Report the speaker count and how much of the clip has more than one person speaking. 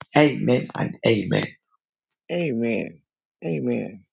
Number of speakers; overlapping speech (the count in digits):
2, no overlap